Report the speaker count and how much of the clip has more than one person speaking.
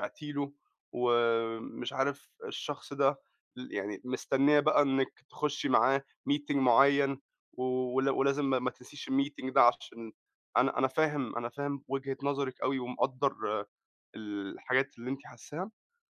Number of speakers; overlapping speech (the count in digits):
1, no overlap